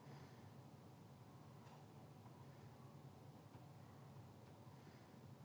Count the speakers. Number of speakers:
zero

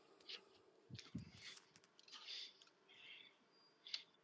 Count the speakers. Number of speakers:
zero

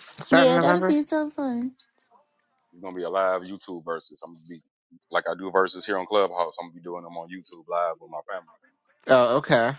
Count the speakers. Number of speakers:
three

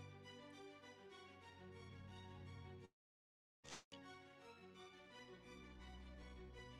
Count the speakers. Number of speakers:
zero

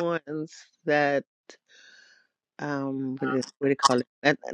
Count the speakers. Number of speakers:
one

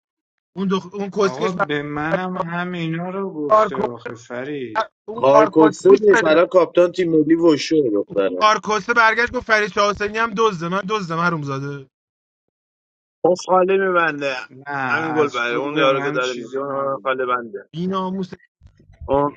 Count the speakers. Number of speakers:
four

